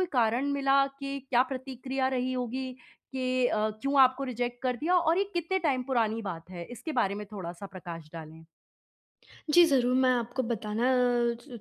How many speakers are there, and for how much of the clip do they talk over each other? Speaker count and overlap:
two, no overlap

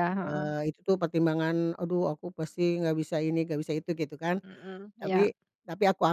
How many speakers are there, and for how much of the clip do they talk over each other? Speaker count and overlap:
two, about 8%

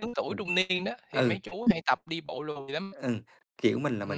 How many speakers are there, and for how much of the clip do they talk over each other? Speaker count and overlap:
two, about 14%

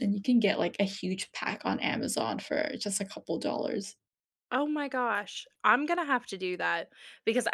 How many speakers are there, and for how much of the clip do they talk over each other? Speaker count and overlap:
two, no overlap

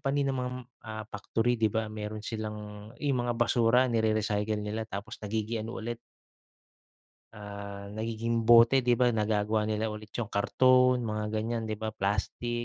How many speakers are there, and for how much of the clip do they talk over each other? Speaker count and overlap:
one, no overlap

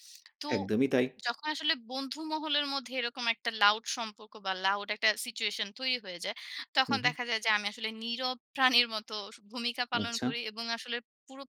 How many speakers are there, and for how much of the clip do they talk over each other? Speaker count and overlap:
two, about 6%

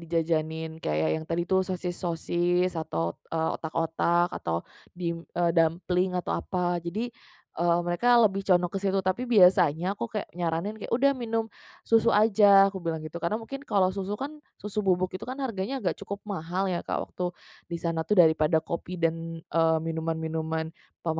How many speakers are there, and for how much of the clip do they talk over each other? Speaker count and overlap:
one, no overlap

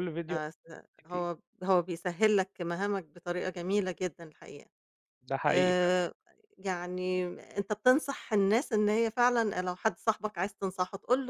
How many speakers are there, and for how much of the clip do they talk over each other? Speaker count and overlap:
two, about 5%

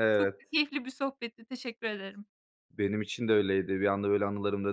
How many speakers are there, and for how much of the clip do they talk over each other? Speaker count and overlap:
two, about 4%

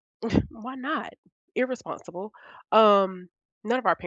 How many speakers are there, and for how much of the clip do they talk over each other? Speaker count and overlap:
one, no overlap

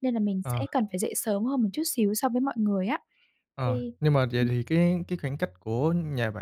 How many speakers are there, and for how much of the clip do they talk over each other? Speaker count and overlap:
two, about 9%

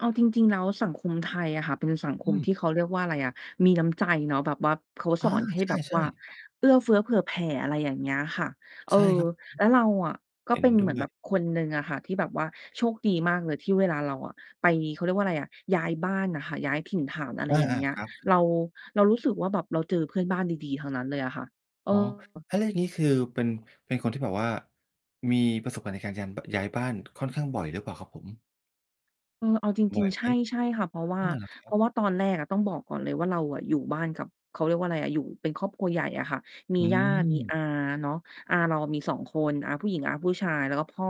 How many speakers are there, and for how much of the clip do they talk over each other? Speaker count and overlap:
two, about 10%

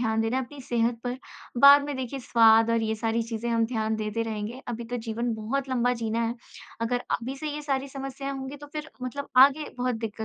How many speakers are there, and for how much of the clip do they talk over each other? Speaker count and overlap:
one, no overlap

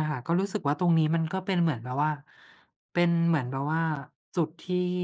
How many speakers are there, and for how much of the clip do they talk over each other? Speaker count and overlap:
one, no overlap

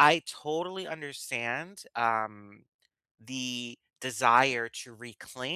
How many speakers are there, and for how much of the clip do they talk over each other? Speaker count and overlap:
one, no overlap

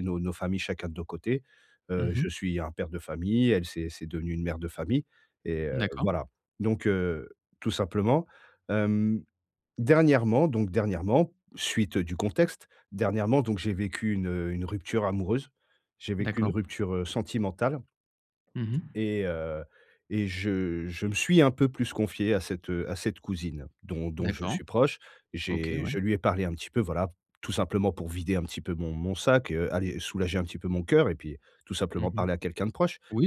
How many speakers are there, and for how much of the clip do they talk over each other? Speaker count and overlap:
two, about 6%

